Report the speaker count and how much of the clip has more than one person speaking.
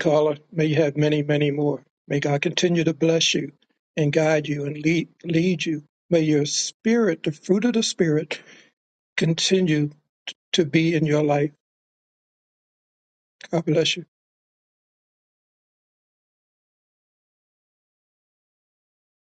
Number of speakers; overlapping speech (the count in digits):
1, no overlap